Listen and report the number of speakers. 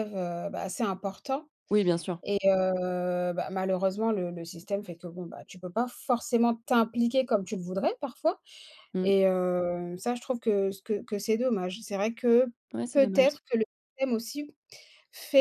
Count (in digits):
2